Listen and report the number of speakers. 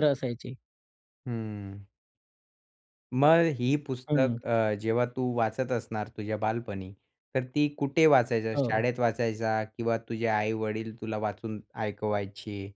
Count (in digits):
2